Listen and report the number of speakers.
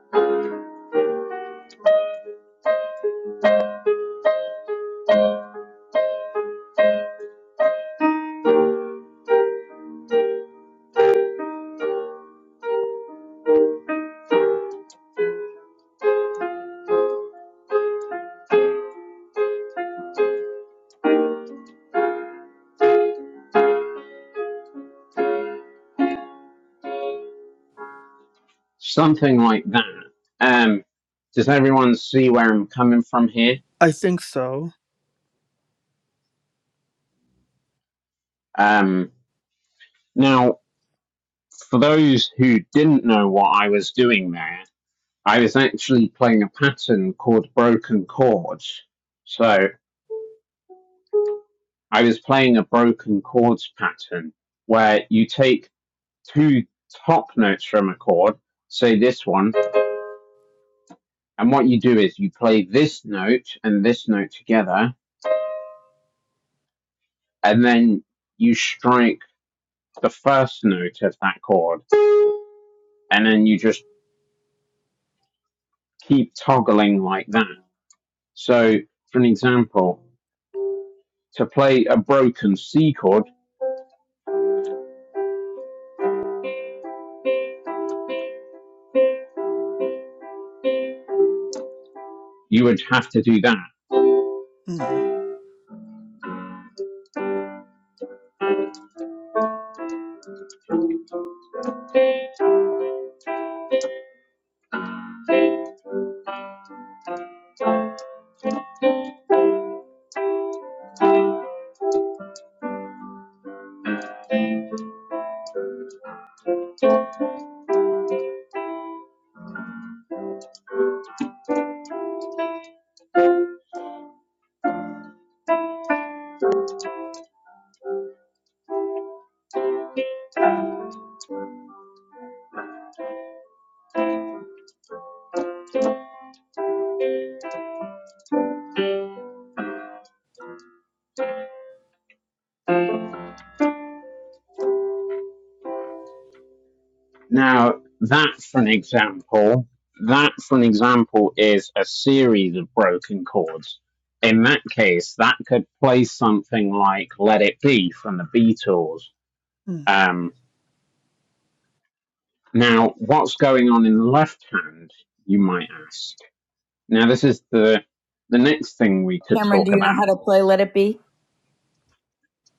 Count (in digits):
3